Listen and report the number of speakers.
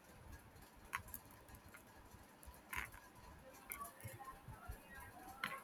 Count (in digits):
0